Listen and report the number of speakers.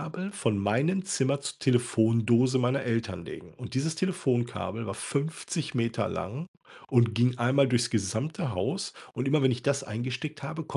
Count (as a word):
one